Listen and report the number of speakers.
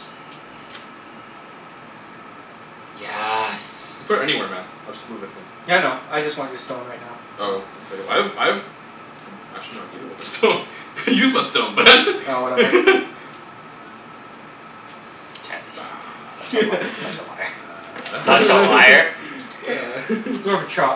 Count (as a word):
three